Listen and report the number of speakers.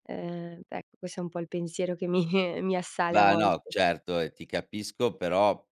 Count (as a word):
two